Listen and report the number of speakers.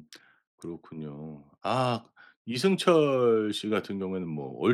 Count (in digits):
1